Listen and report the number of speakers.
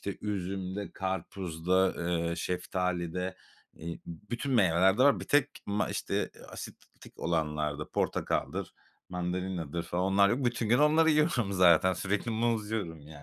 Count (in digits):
1